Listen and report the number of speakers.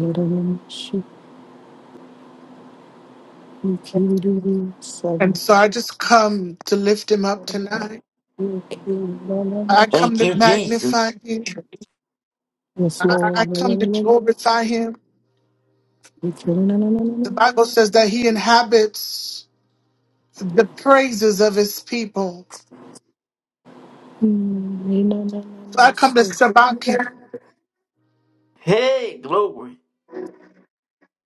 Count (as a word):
three